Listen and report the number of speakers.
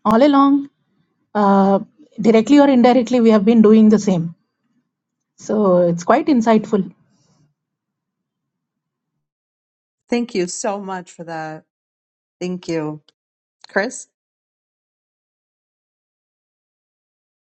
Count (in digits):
2